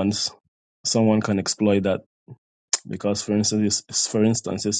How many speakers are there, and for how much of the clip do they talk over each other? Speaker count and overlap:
1, no overlap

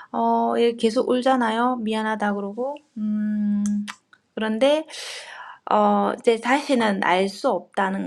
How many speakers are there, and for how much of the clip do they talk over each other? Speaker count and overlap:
1, no overlap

